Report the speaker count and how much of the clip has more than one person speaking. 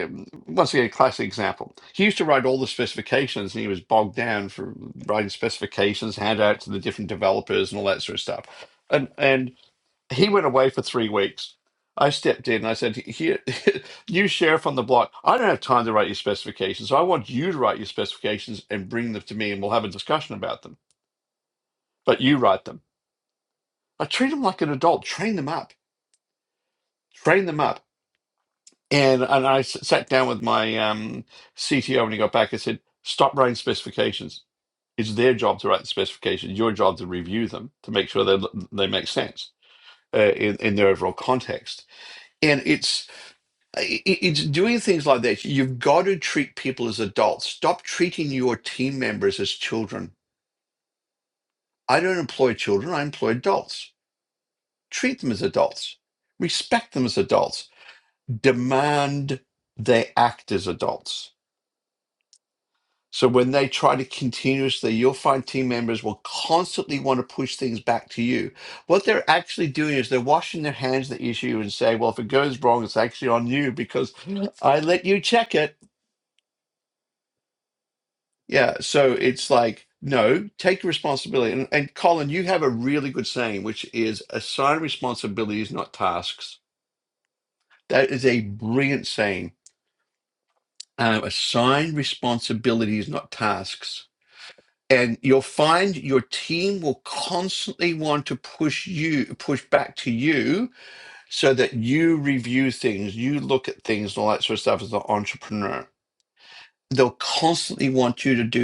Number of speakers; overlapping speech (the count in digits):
1, no overlap